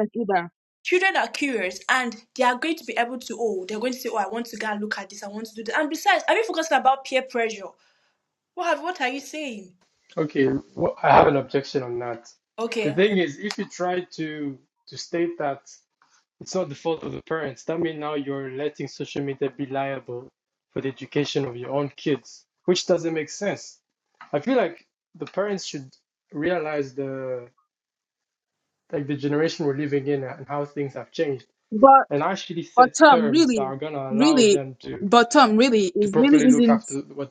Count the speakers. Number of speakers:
three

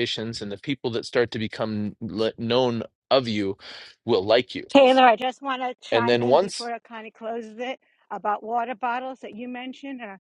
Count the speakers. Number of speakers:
two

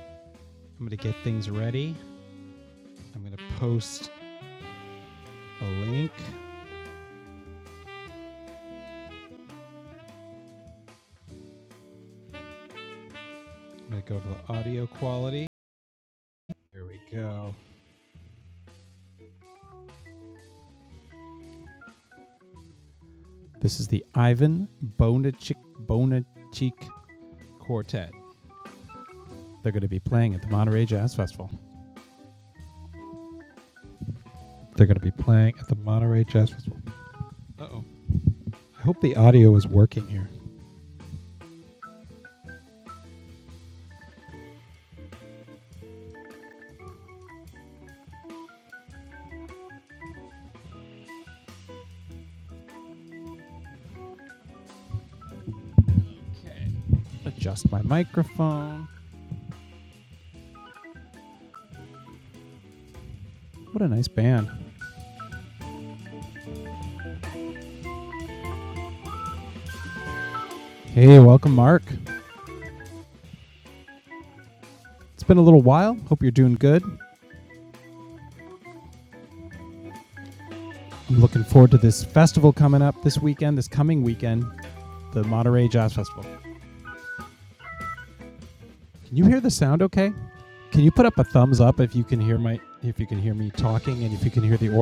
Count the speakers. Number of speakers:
one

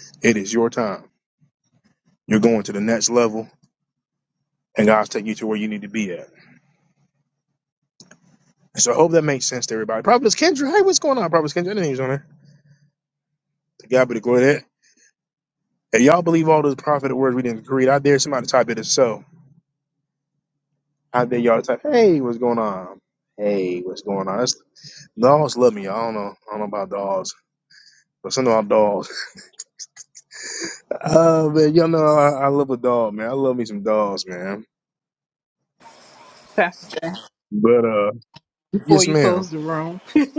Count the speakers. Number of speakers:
two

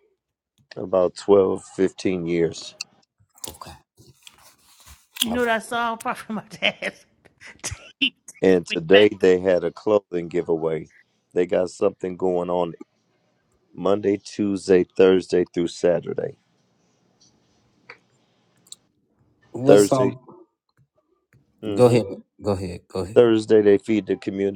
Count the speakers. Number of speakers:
three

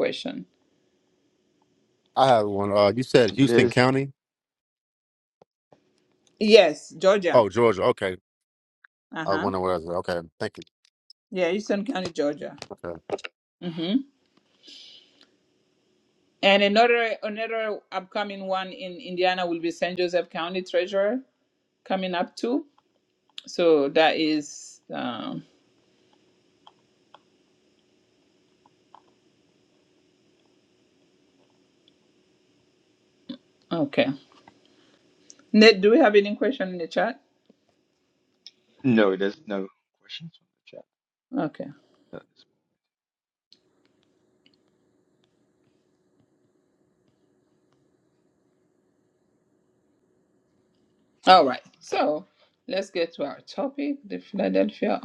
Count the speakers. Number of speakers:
three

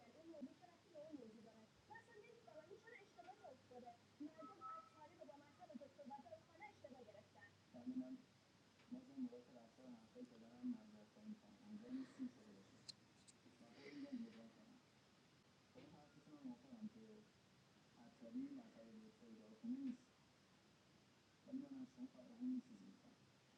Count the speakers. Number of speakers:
zero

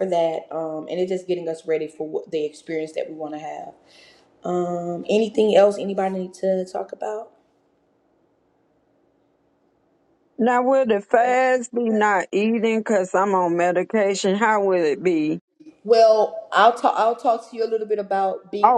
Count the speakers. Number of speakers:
two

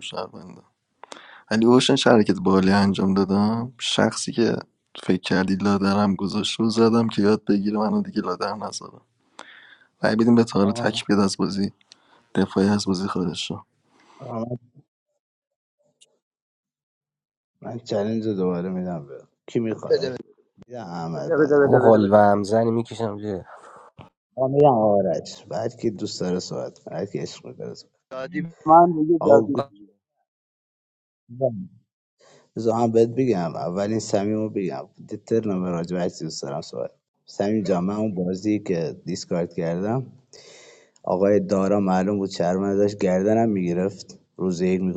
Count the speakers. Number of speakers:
four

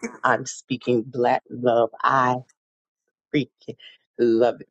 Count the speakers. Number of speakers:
one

